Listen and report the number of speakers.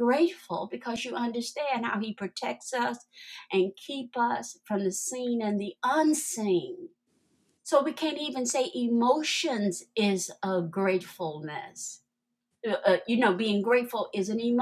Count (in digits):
1